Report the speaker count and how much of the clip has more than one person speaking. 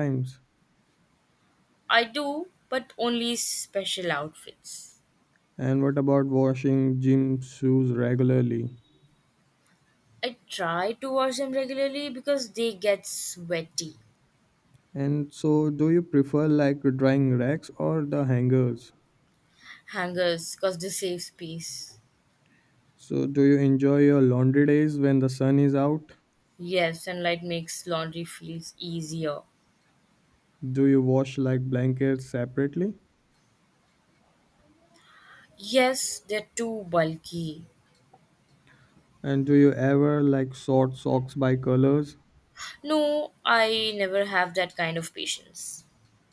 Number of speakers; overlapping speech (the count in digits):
2, no overlap